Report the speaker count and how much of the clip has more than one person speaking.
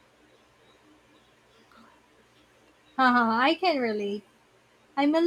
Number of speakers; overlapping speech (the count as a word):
one, no overlap